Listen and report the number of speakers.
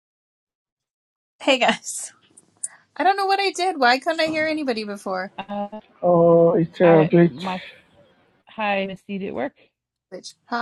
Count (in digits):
3